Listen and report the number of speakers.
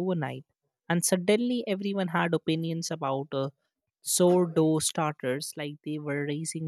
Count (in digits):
1